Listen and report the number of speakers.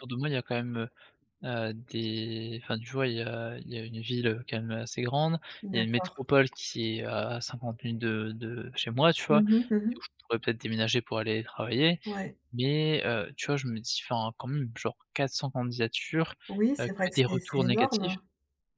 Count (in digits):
2